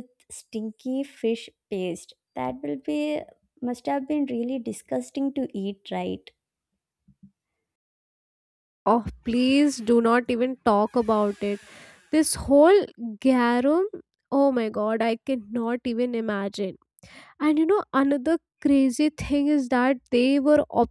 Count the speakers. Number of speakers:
2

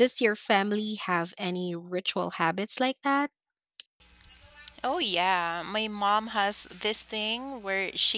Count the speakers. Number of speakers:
2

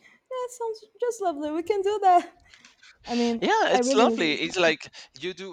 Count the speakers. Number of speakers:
2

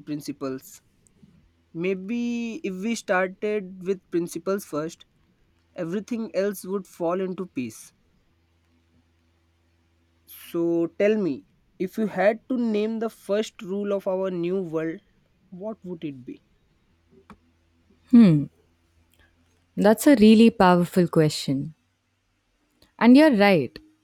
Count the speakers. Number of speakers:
2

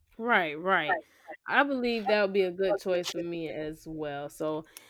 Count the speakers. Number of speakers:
1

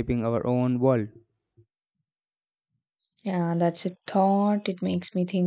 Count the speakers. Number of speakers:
2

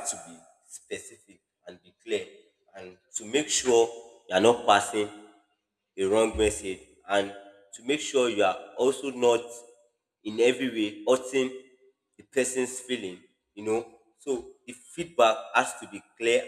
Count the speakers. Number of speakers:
1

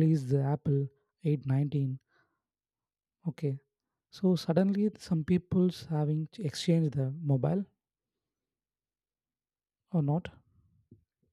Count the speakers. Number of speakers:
1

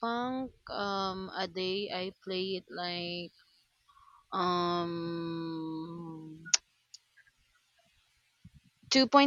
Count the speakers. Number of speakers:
1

